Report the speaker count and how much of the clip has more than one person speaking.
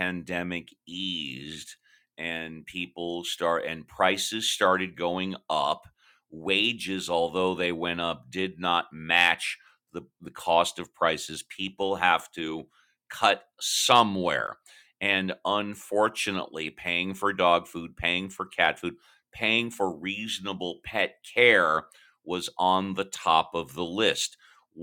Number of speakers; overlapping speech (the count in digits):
1, no overlap